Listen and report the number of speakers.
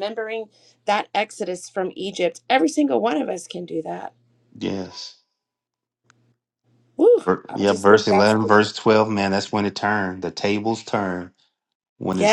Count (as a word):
two